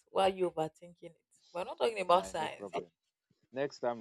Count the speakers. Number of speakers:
2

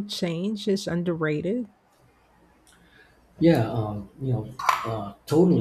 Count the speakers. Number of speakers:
2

